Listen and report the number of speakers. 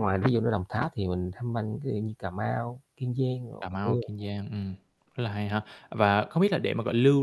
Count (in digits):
2